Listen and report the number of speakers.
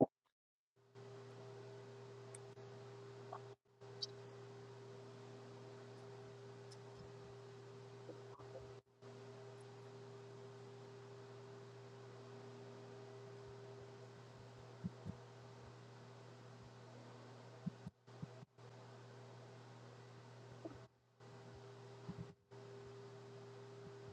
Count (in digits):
0